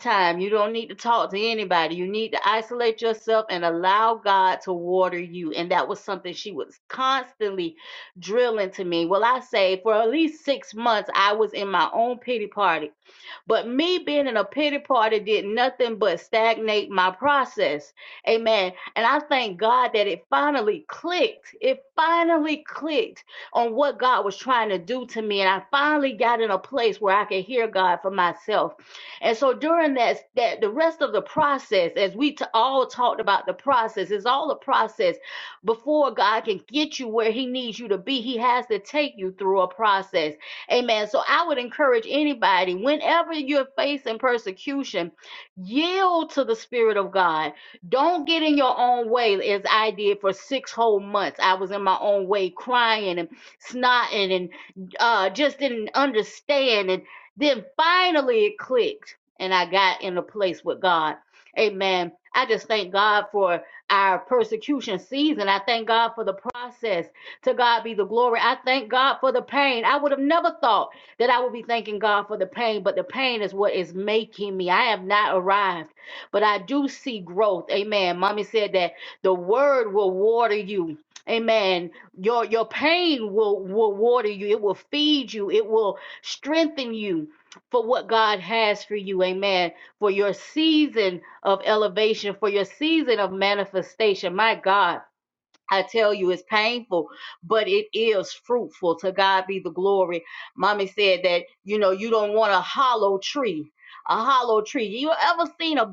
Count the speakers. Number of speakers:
1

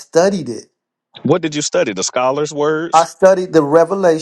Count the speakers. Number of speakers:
2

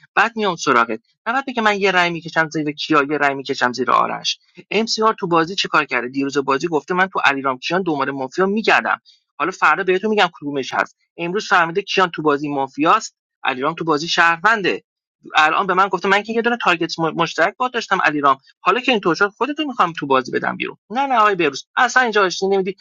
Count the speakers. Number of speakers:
1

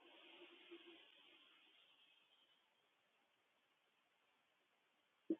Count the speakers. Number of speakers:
0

